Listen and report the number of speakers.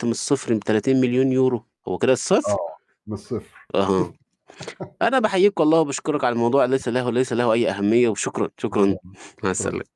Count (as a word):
two